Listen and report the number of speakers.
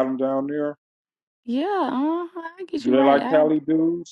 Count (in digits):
2